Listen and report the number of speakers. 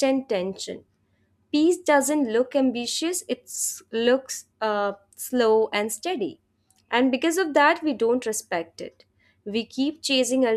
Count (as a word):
one